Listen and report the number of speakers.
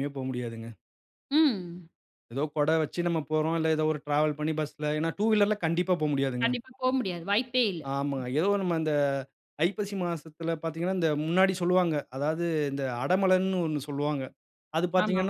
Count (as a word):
two